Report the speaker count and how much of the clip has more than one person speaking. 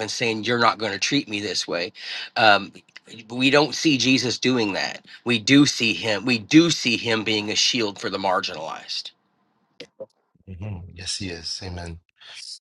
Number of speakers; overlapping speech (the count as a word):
two, no overlap